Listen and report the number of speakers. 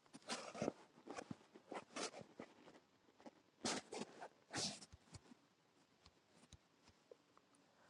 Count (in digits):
0